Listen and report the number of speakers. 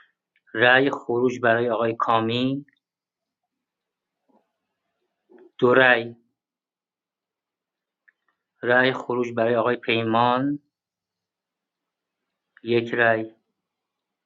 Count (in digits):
1